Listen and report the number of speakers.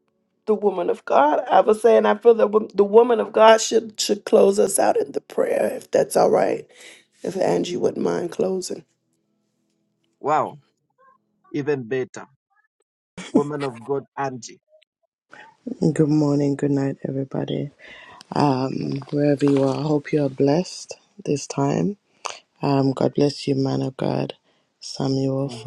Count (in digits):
3